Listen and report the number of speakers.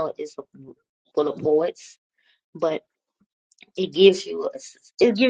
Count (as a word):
one